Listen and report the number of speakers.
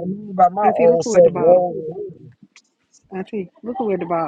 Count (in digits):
2